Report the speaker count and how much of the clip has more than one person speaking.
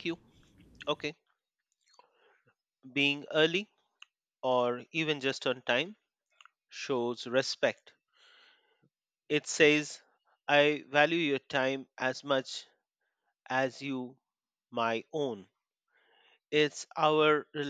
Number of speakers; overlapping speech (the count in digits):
1, no overlap